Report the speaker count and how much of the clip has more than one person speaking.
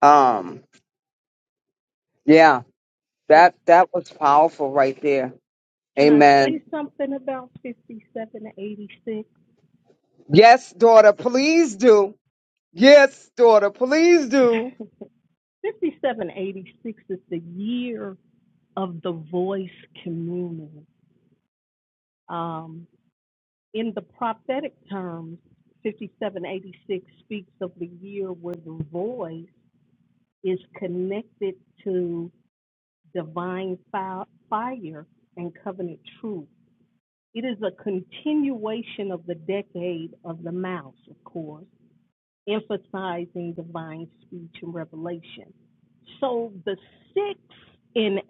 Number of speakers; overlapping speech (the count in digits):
2, about 1%